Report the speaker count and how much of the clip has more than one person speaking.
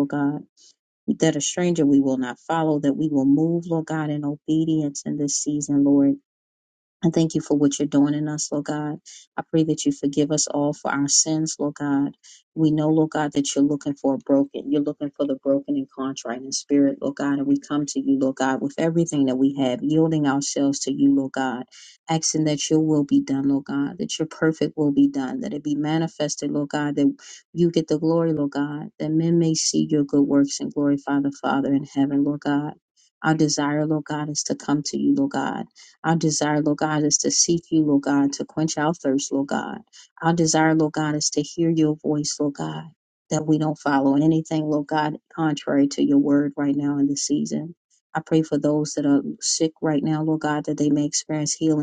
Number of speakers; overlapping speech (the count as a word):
one, no overlap